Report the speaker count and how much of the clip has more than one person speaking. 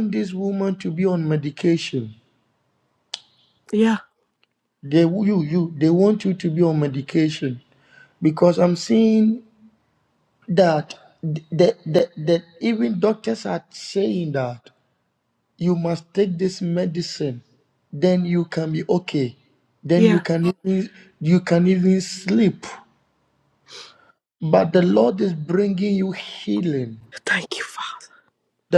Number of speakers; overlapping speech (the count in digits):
2, about 1%